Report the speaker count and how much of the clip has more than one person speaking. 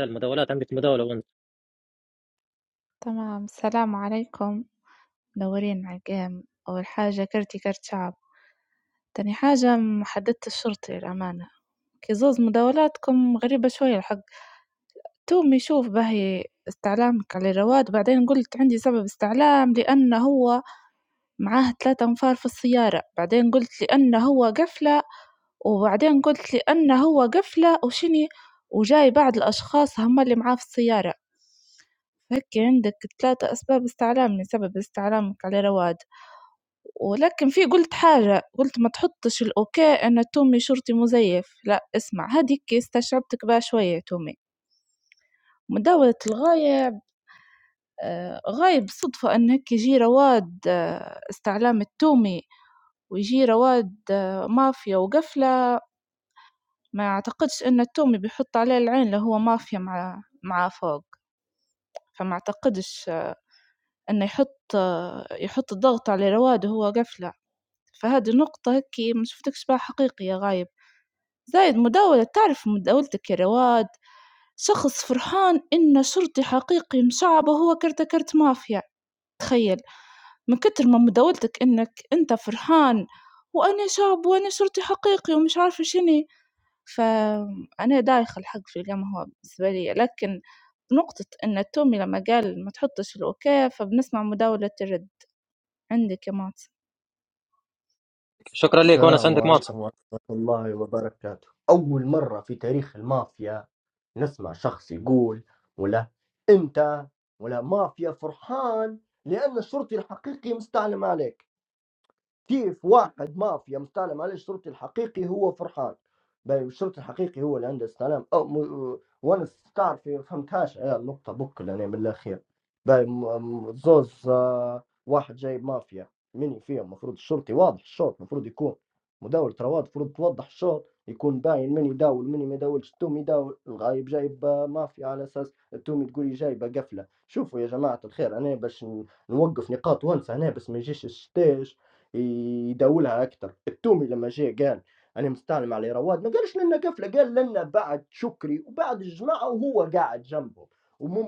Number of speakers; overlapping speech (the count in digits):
3, about 1%